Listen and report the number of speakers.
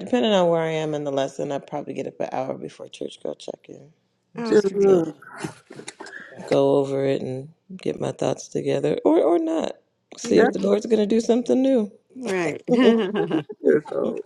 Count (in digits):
3